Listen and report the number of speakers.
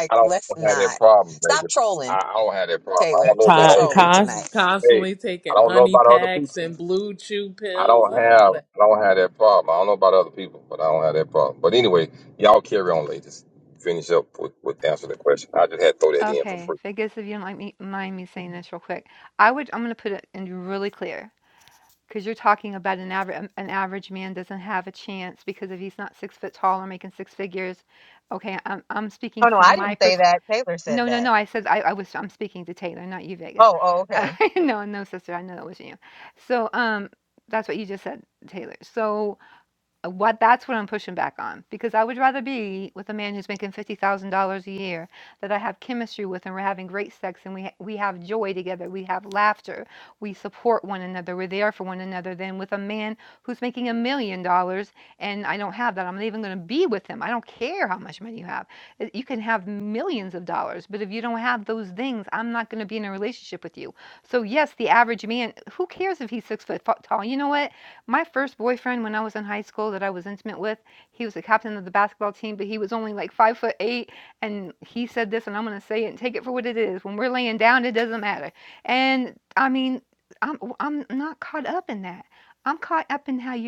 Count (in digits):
4